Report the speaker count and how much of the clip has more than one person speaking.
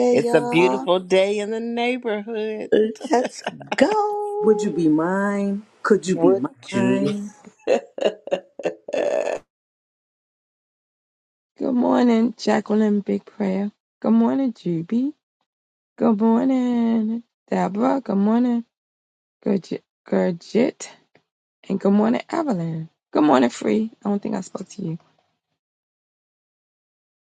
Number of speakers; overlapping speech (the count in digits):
4, about 7%